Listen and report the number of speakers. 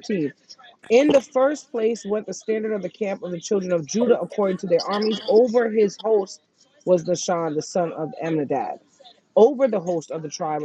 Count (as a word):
one